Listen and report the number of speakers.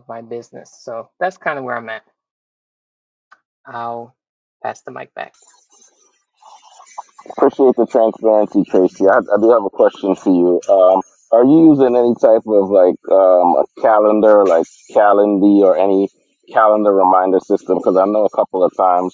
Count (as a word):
two